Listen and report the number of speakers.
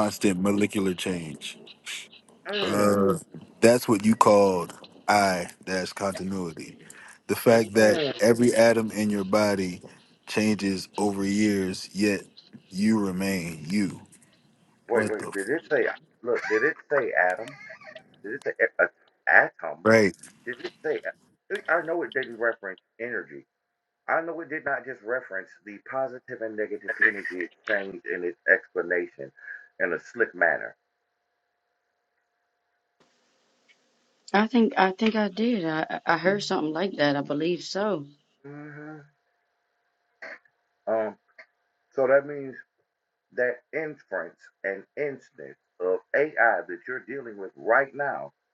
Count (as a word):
three